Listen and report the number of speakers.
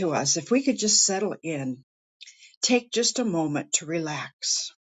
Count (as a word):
one